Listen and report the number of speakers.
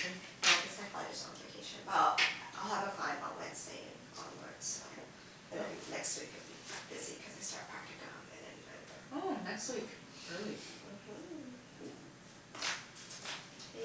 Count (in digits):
2